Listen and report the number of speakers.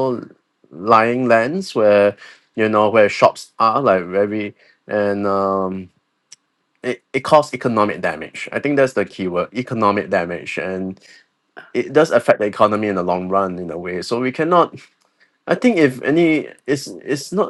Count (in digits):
1